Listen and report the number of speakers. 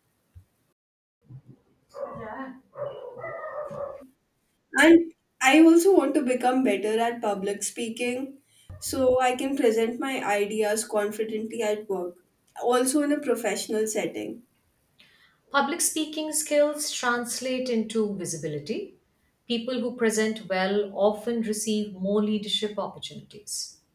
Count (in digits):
2